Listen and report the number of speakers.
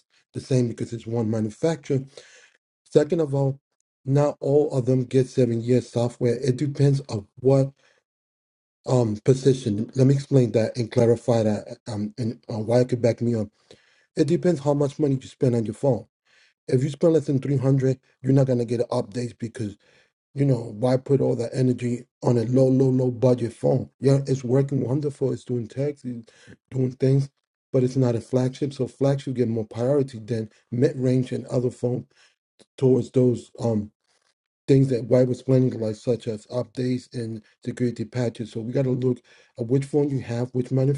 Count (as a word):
one